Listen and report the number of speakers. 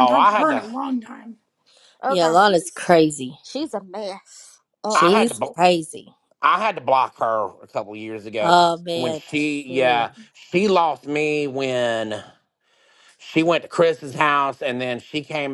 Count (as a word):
four